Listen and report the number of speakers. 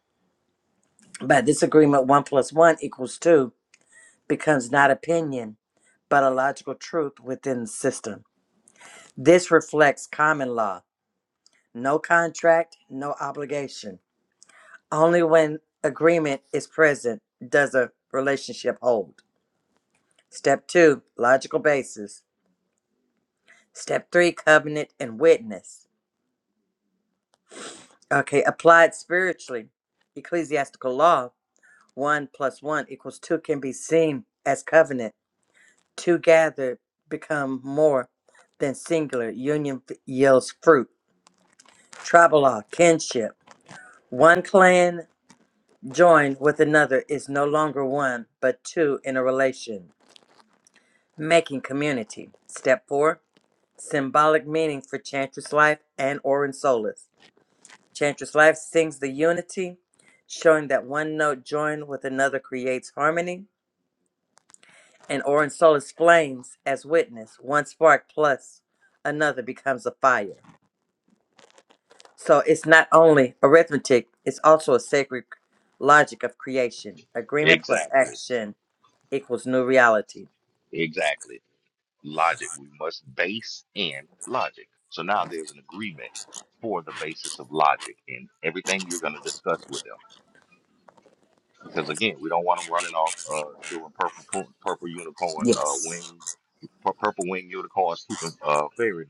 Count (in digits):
2